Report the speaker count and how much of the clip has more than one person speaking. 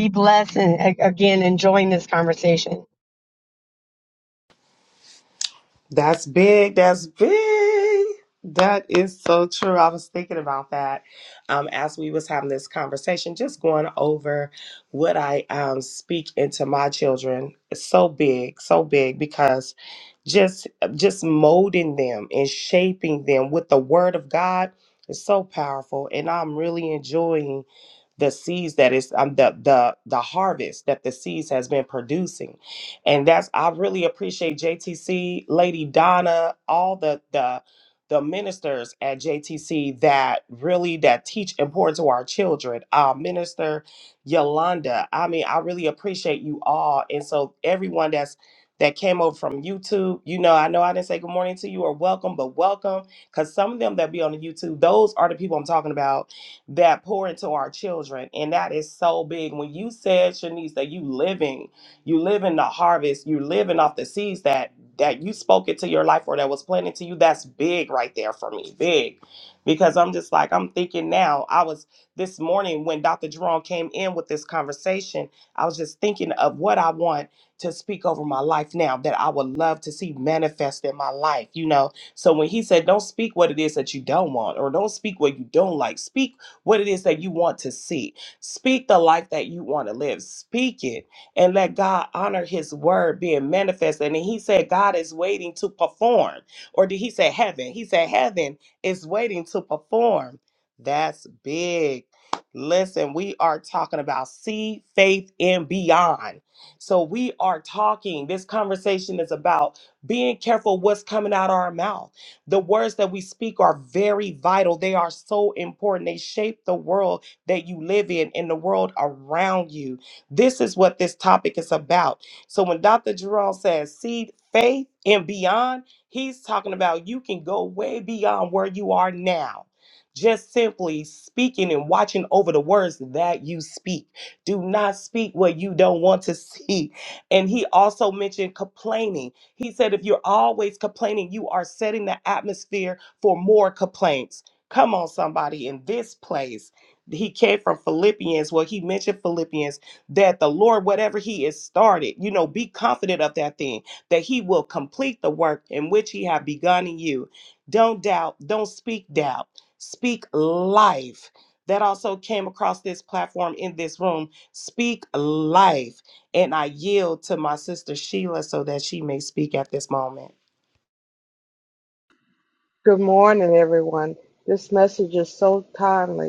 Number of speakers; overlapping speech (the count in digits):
3, no overlap